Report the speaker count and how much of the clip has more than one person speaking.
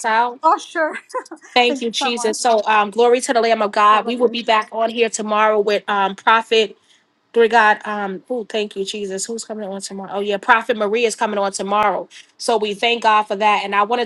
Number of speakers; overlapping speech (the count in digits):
2, about 8%